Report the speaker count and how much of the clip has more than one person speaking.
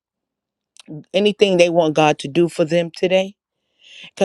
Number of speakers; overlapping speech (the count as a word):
one, no overlap